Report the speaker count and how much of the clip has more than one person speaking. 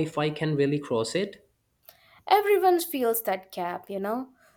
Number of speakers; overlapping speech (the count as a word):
two, no overlap